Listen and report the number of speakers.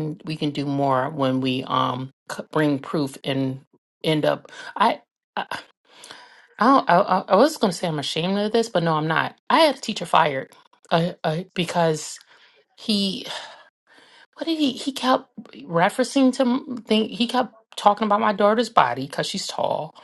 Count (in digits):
1